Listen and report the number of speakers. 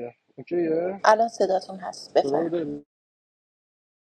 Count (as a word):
two